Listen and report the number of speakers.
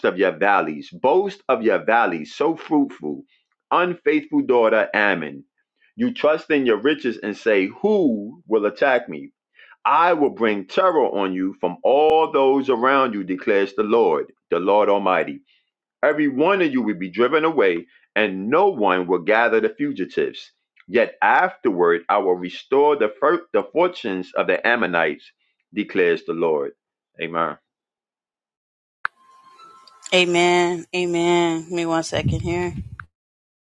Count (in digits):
2